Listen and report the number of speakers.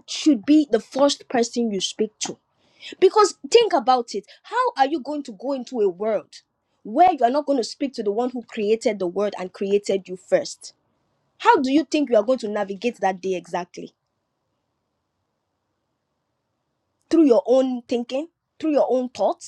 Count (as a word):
one